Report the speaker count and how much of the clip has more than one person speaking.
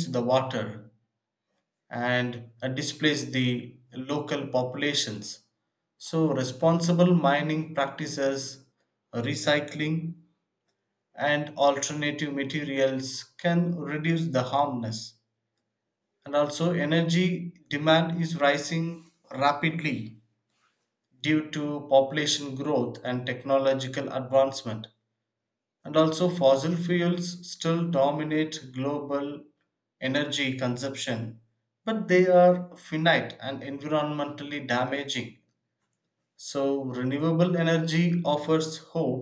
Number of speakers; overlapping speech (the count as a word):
one, no overlap